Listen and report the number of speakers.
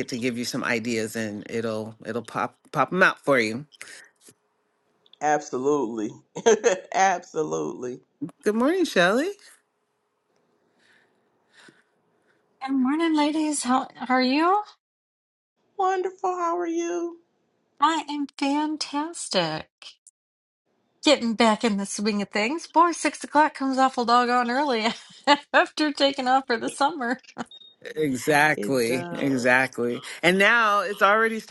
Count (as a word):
three